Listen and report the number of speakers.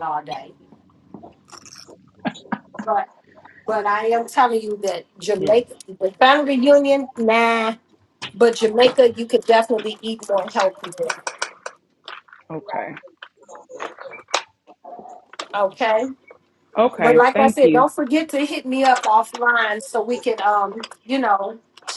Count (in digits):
2